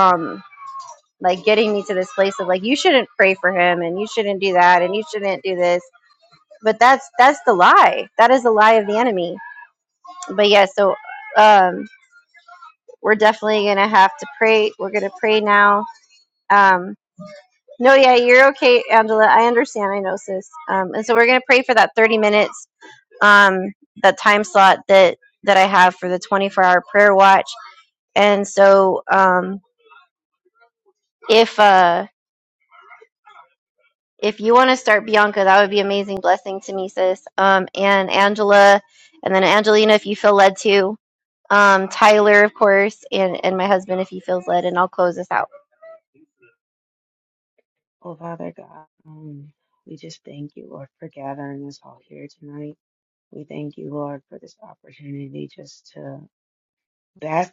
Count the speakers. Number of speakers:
2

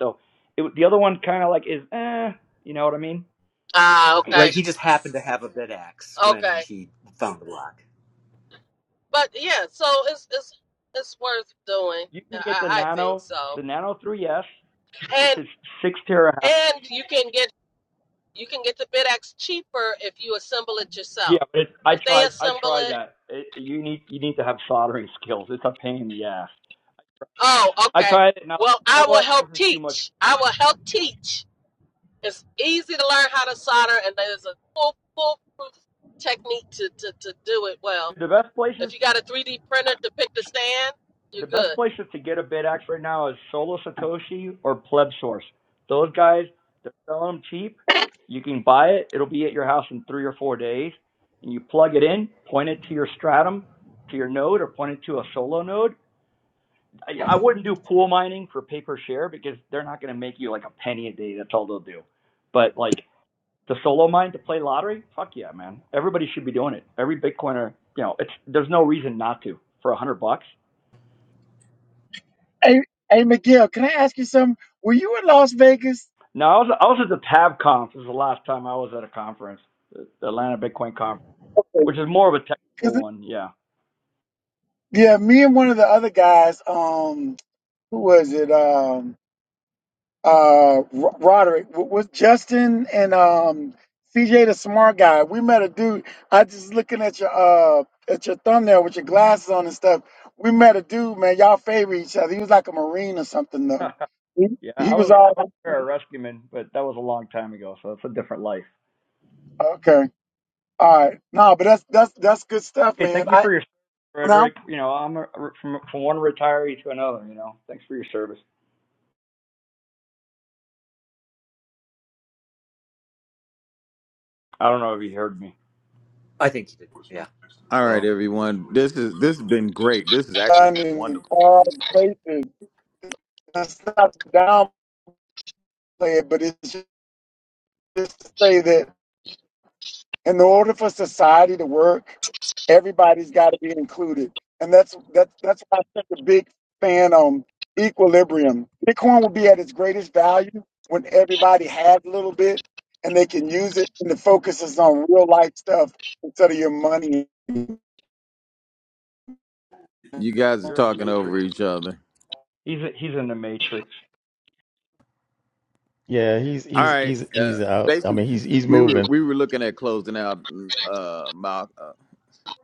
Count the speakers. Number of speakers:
6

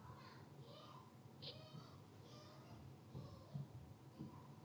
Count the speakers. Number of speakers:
0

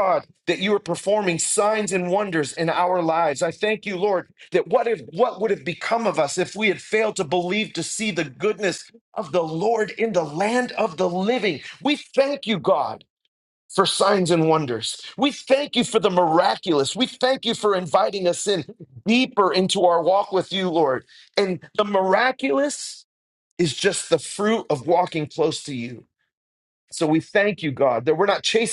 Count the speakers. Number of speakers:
1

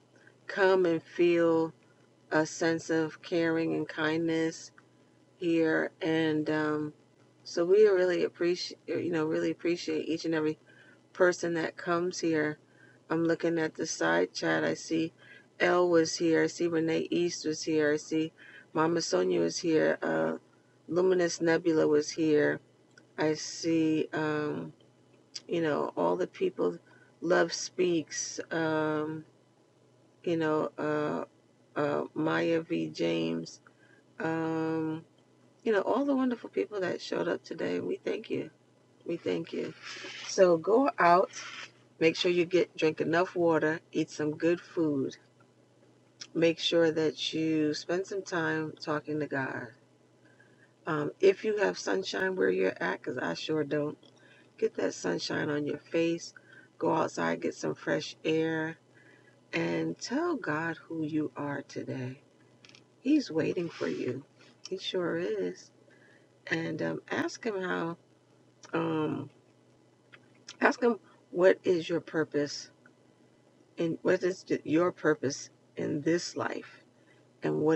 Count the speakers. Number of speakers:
1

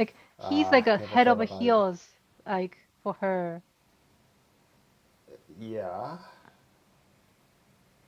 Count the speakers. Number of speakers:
2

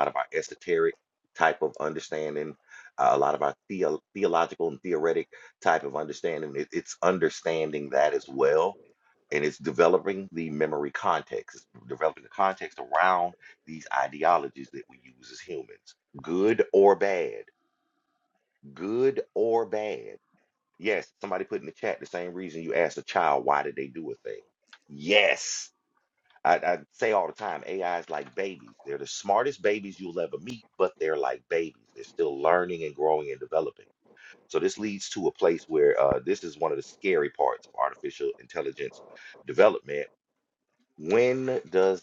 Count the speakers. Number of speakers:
1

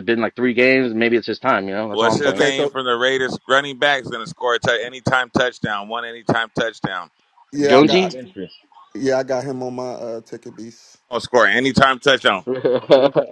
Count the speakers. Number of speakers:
3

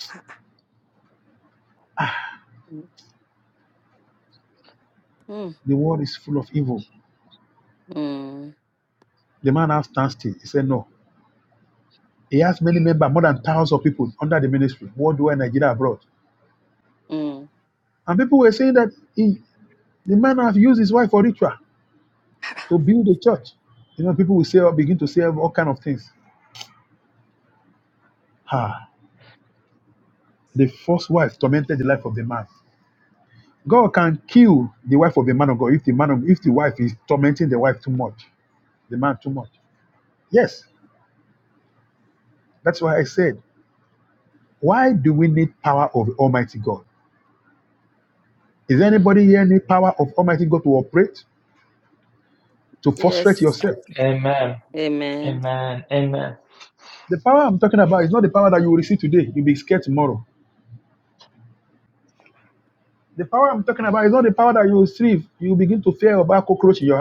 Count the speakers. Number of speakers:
3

